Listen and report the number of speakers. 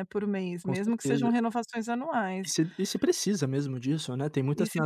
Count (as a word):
two